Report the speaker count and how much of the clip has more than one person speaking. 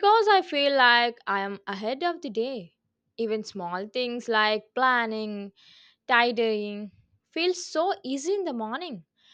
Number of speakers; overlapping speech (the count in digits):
1, no overlap